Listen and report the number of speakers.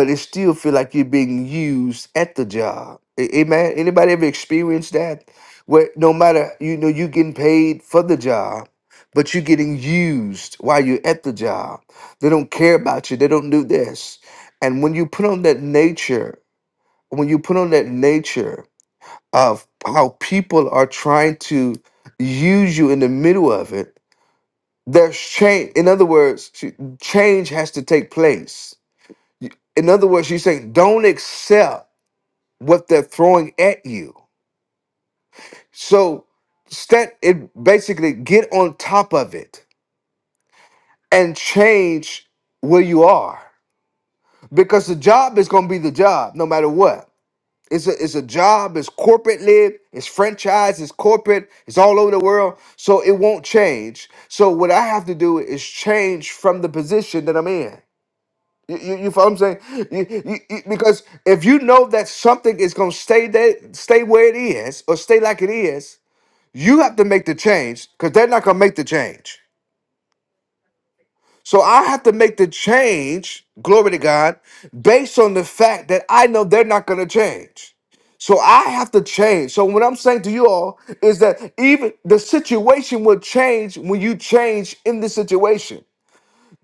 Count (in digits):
1